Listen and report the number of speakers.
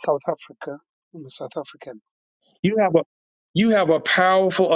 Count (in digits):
2